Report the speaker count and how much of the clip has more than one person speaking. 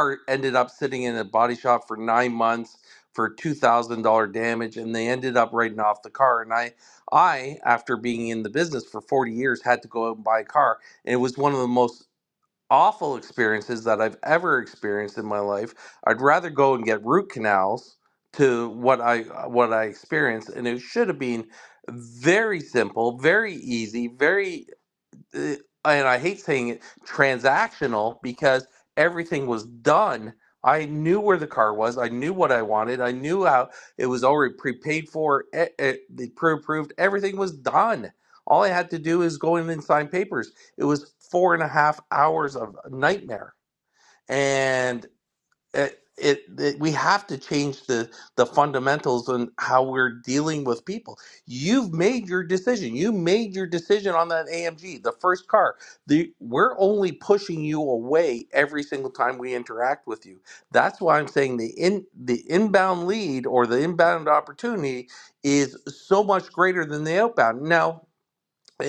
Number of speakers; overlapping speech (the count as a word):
one, no overlap